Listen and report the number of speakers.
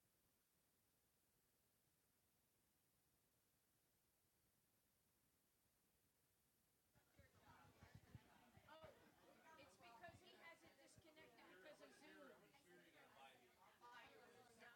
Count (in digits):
0